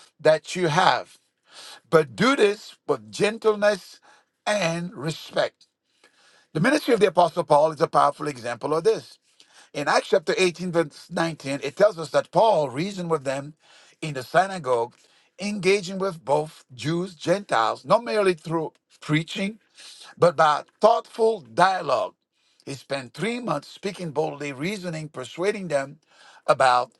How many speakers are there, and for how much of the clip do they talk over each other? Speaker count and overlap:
one, no overlap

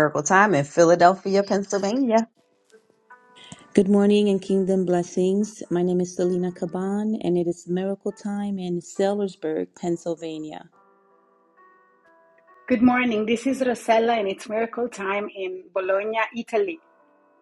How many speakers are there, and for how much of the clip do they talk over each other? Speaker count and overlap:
three, no overlap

